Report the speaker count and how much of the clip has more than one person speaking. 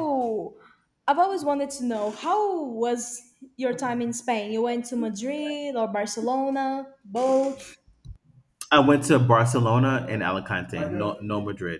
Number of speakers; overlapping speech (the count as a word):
two, no overlap